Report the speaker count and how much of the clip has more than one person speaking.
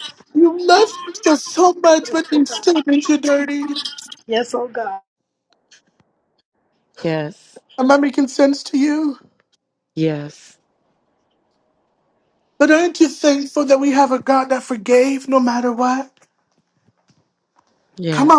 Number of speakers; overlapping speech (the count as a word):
three, about 5%